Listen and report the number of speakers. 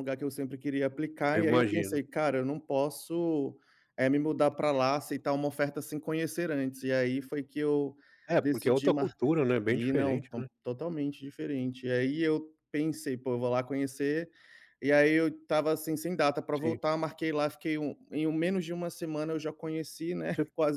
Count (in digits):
2